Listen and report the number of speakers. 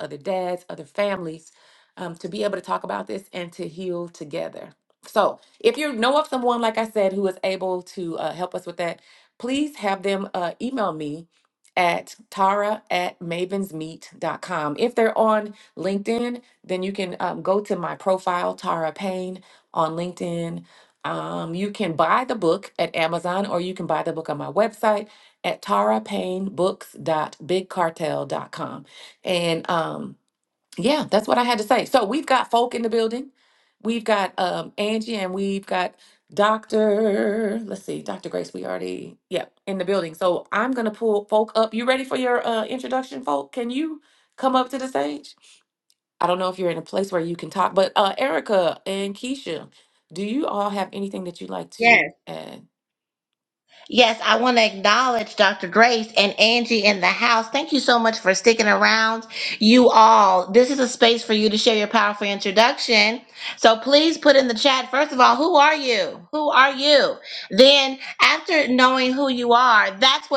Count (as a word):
two